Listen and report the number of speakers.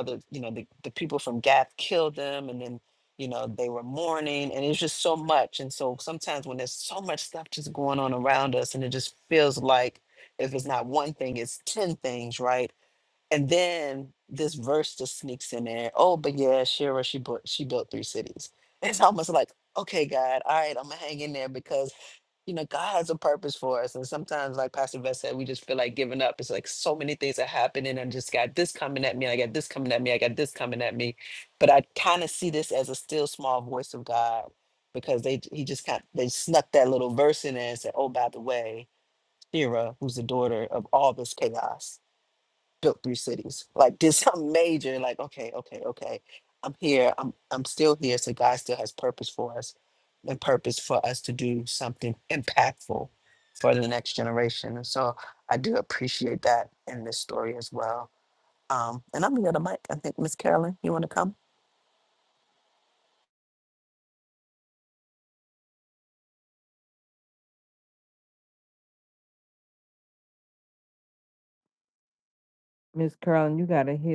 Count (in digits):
2